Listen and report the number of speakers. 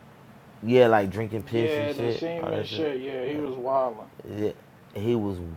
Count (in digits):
2